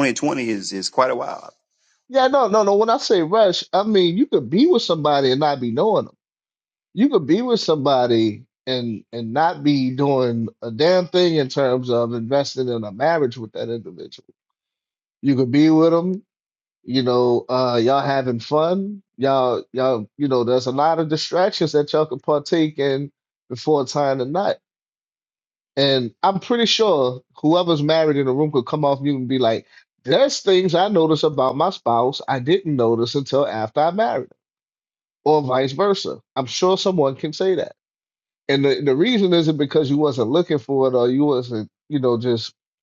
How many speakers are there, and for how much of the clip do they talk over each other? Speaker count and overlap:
2, no overlap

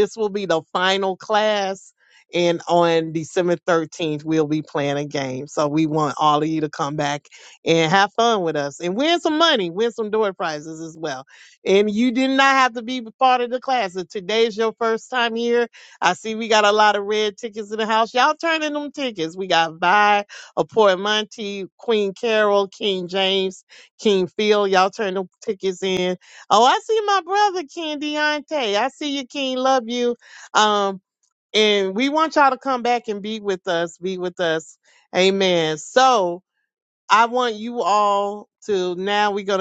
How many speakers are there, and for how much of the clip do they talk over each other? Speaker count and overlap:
1, no overlap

